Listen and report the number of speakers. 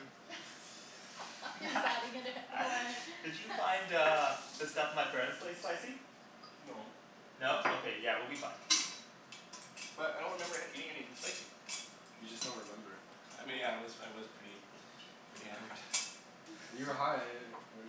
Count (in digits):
4